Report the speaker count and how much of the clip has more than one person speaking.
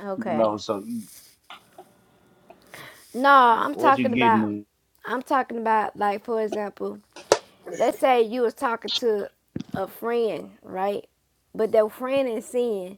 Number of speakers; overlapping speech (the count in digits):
2, about 9%